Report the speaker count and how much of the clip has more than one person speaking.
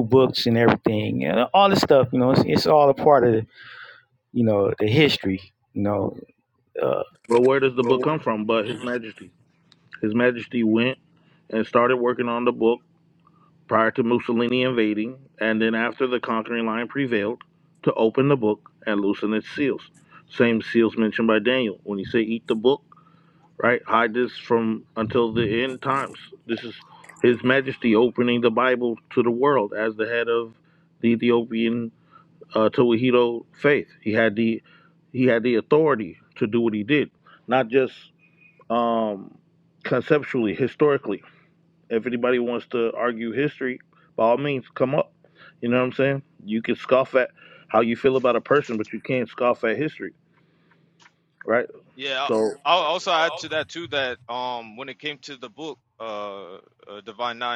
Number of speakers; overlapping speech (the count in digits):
3, under 1%